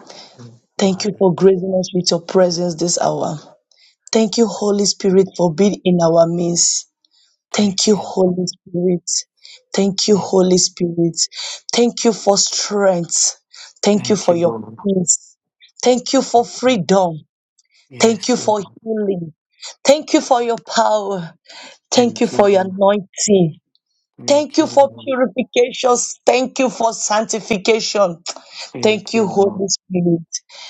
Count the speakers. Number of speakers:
2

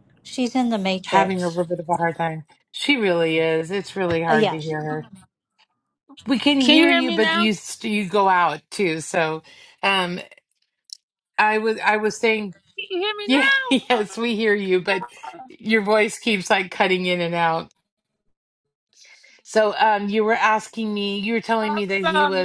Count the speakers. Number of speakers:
3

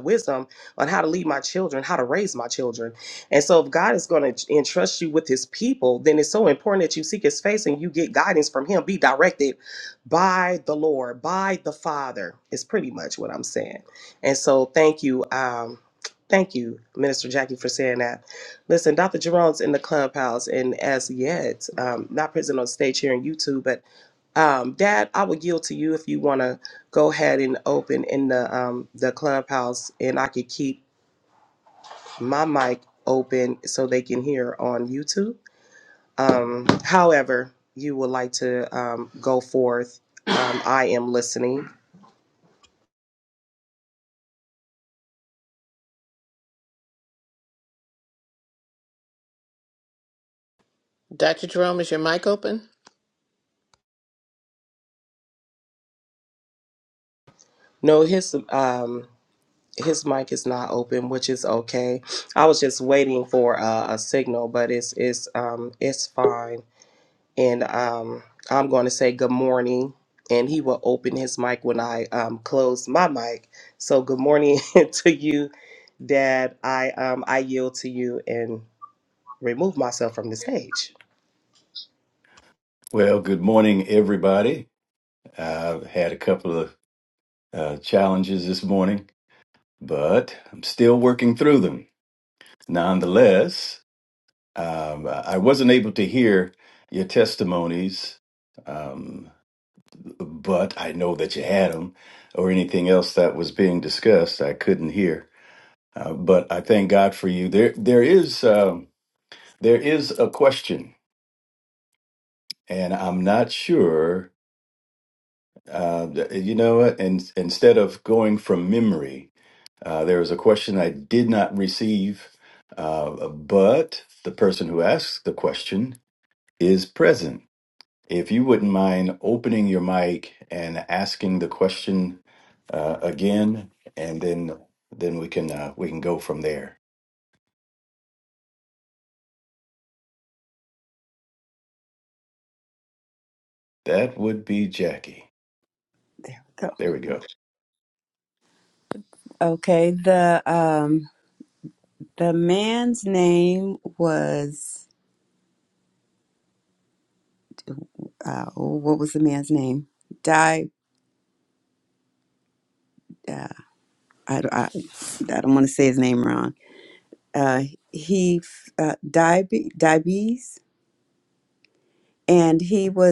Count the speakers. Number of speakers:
4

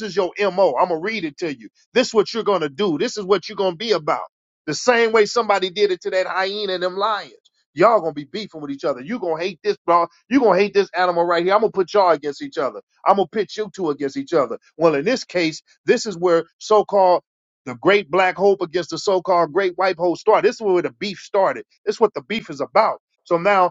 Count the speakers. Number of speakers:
1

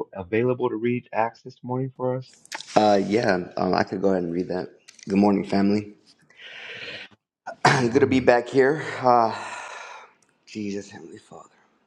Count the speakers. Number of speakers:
2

